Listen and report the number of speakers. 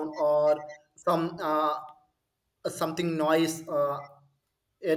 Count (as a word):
one